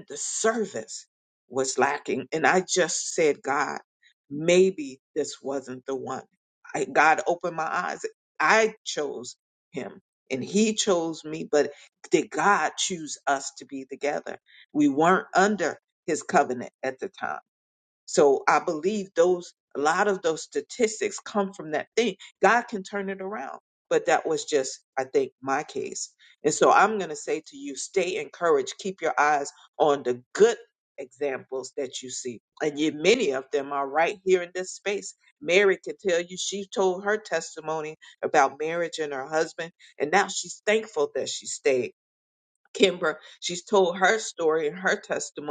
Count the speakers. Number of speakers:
1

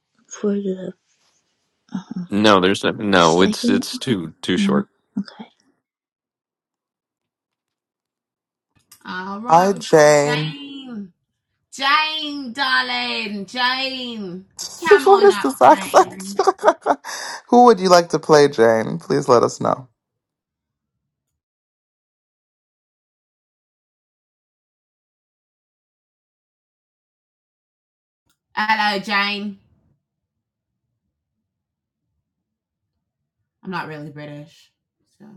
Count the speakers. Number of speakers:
4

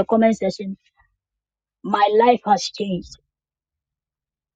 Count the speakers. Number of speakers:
1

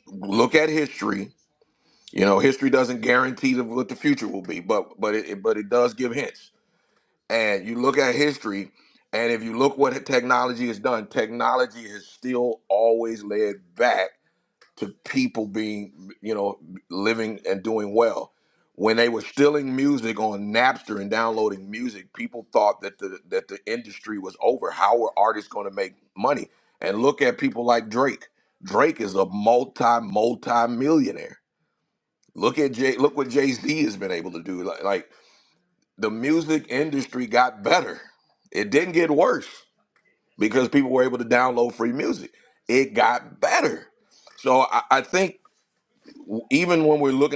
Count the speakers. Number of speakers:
1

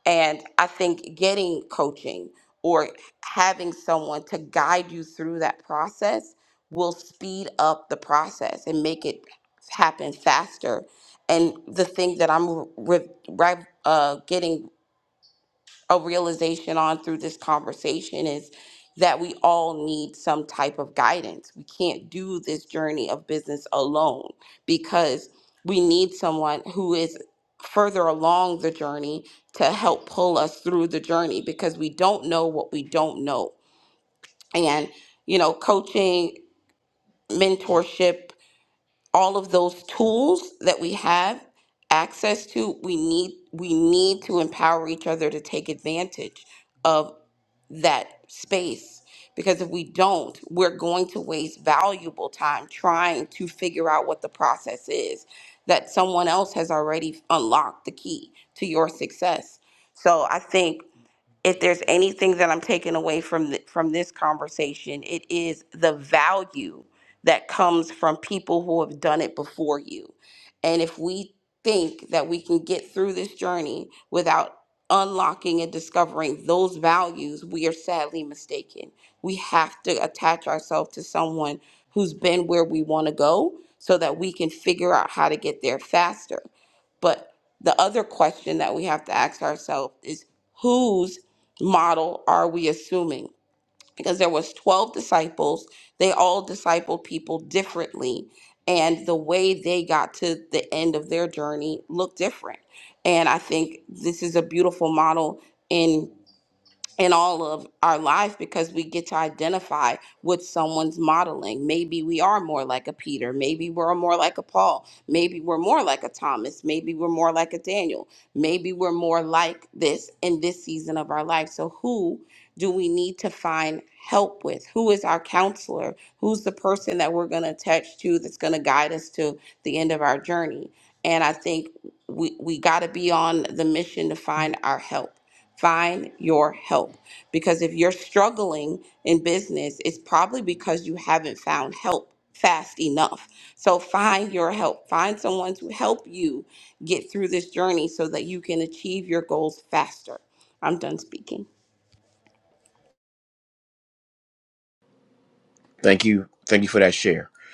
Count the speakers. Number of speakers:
2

